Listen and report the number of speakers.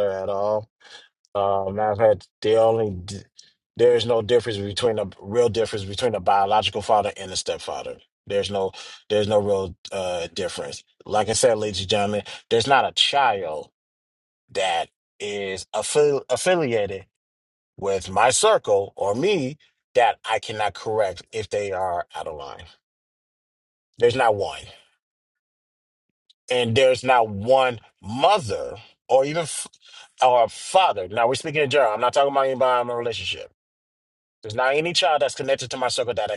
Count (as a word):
one